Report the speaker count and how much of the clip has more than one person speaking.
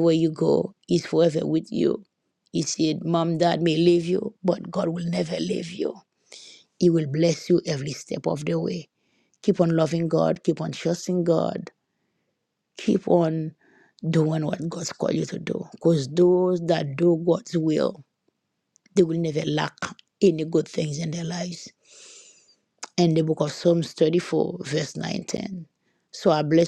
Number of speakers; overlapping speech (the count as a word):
one, no overlap